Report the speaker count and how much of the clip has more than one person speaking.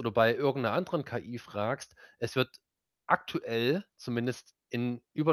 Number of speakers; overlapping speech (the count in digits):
1, no overlap